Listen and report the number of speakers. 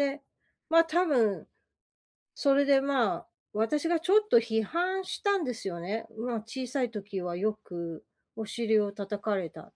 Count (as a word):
one